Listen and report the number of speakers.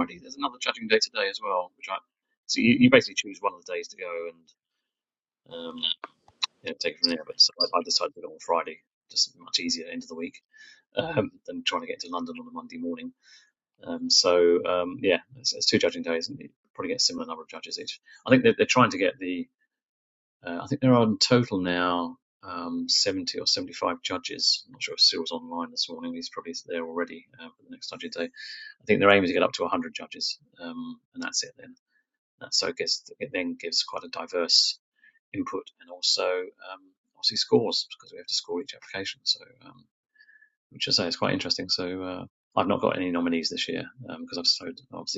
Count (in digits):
1